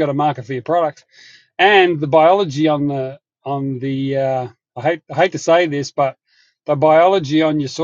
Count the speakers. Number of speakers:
1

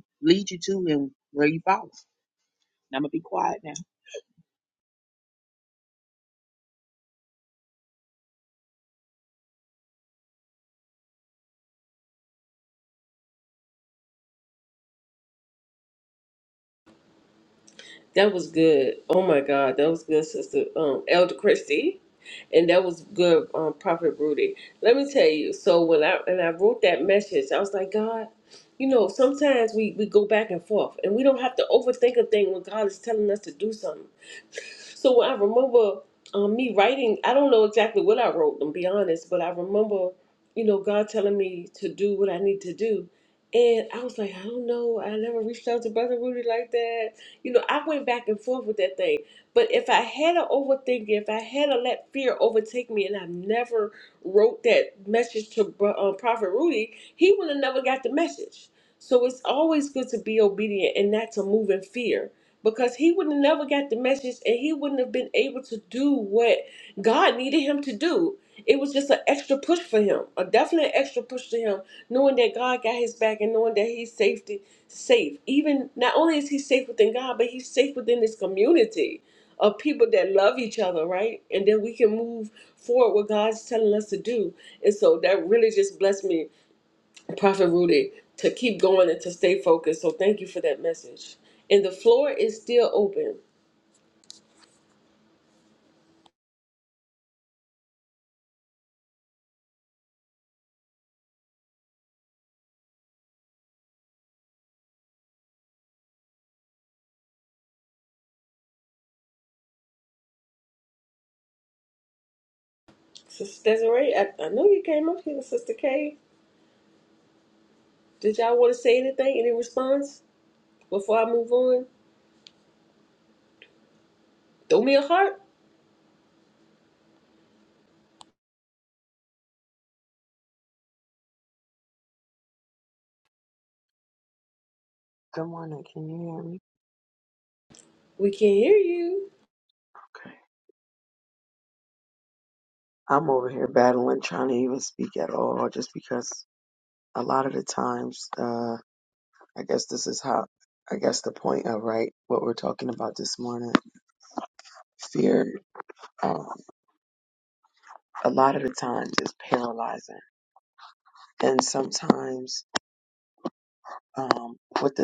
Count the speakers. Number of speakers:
3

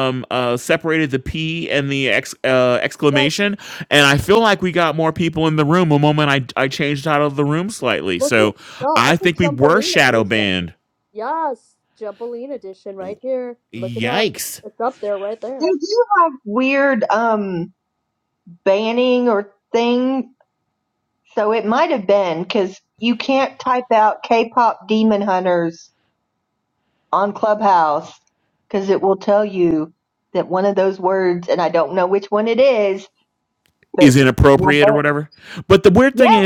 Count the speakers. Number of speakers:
3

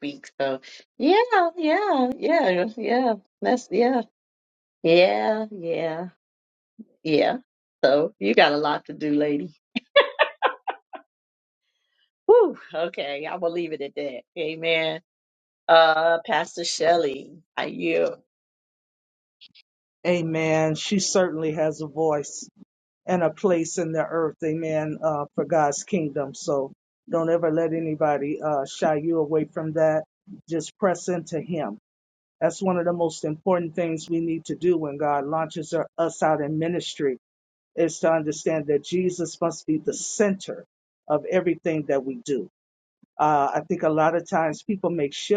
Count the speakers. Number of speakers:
2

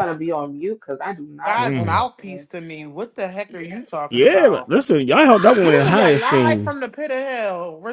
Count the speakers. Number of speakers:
3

